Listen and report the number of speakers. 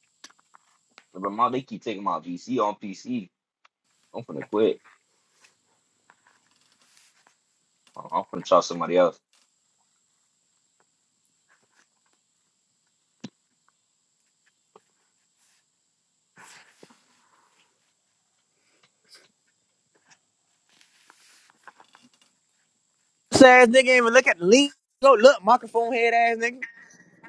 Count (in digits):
2